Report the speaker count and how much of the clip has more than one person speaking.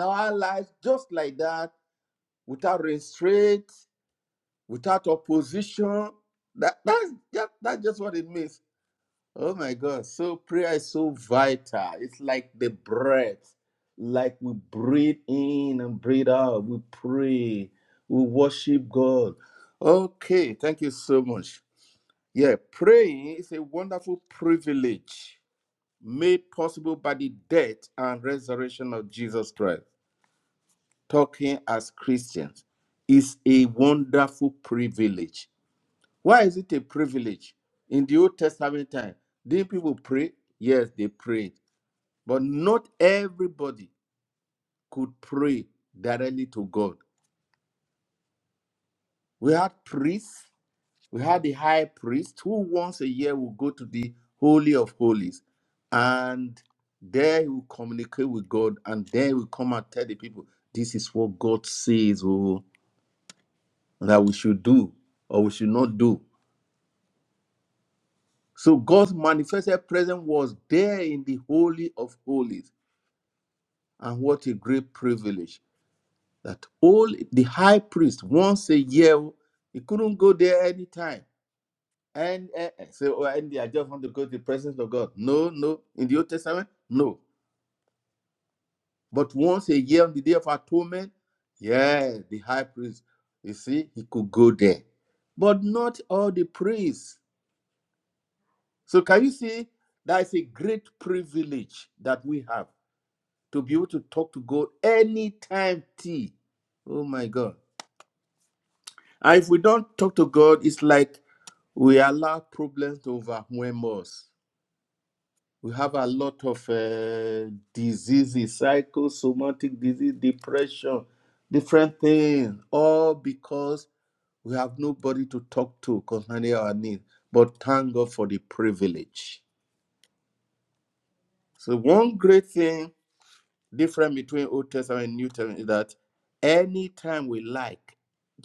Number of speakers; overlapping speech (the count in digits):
1, no overlap